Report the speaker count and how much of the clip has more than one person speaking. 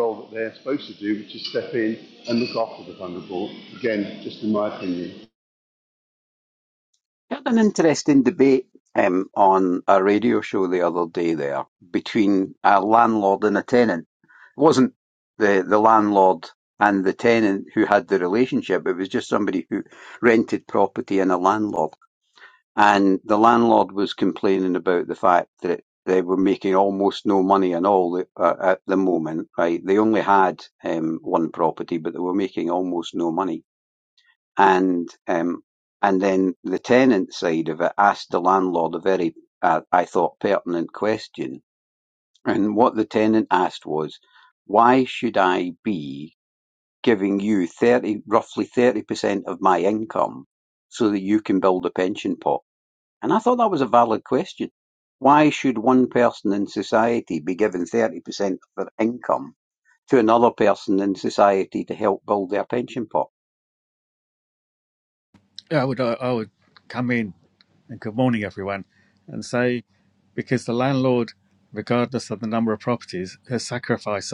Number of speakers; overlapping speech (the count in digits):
3, no overlap